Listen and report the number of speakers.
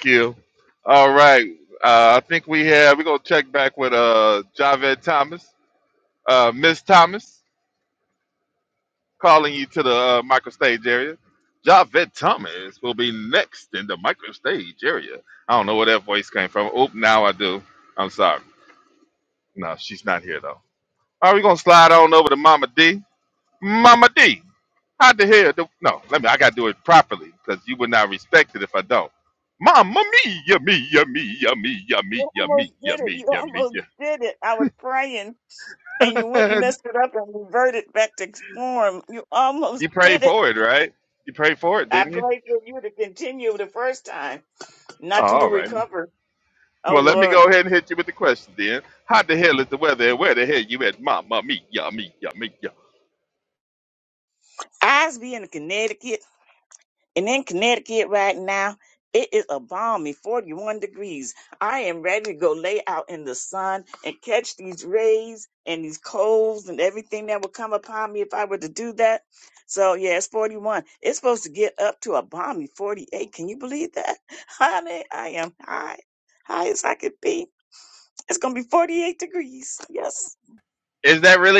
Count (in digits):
2